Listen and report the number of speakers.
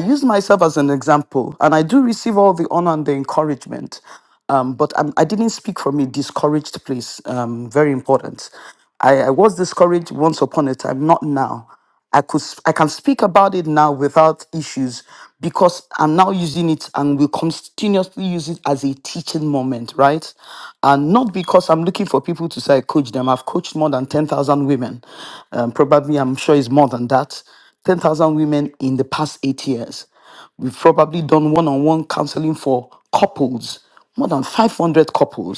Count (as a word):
one